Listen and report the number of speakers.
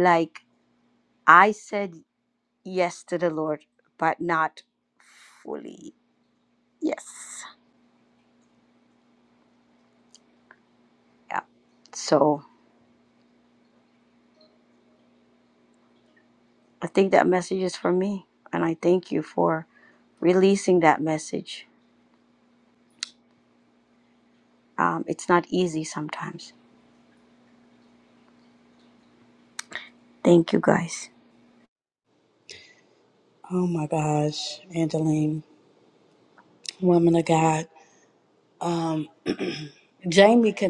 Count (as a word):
two